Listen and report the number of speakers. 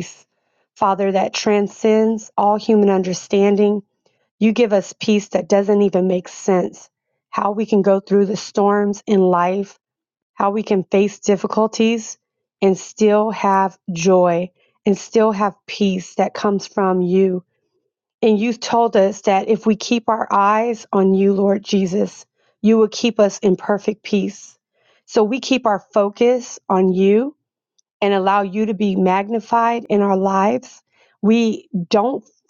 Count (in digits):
1